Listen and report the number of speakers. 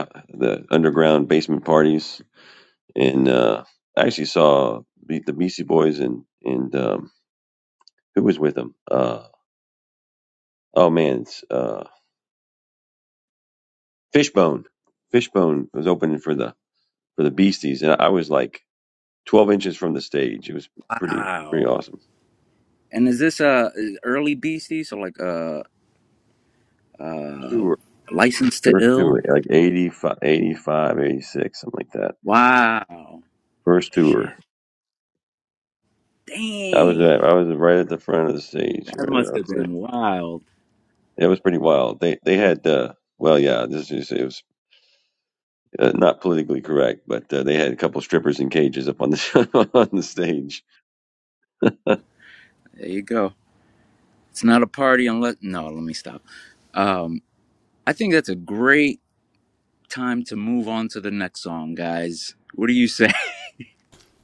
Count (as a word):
two